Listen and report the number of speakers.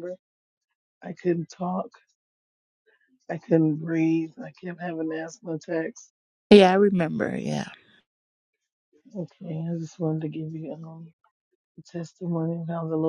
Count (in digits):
2